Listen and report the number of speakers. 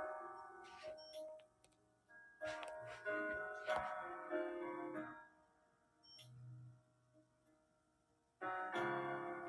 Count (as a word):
zero